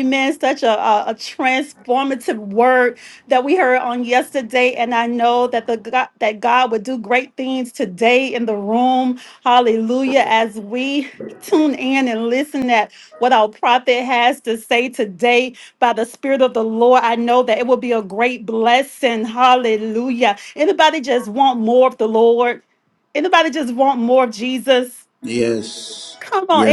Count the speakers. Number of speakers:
2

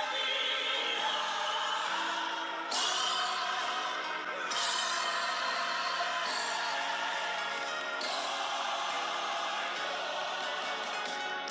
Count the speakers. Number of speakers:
0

